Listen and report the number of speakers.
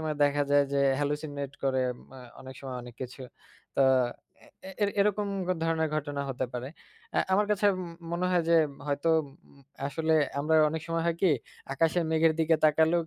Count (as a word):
one